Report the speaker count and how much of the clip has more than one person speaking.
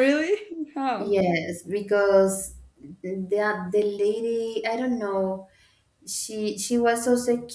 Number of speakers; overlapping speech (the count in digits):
2, about 2%